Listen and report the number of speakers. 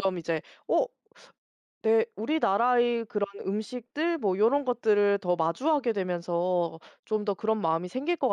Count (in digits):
1